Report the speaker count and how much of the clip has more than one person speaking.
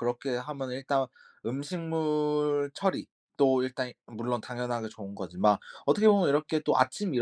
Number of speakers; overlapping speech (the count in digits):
1, no overlap